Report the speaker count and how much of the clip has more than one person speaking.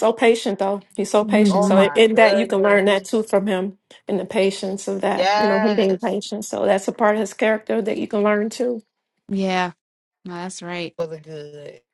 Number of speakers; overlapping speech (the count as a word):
three, about 20%